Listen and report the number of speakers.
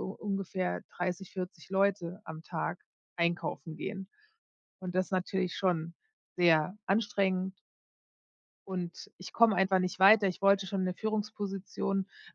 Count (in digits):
1